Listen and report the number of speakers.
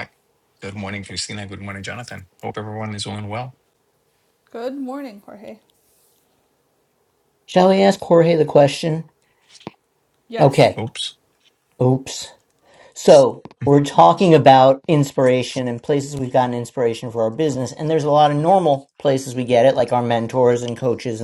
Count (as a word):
three